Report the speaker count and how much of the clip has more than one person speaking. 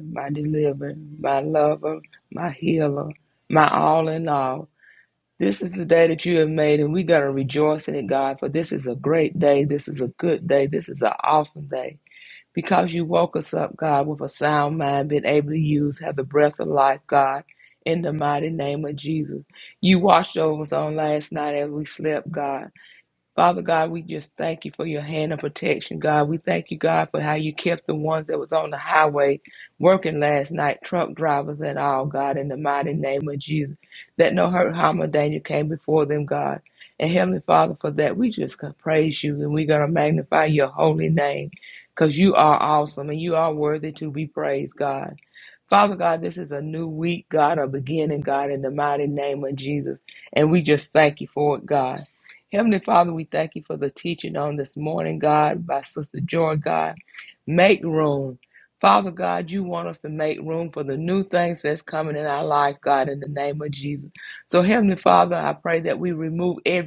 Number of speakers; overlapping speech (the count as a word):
one, no overlap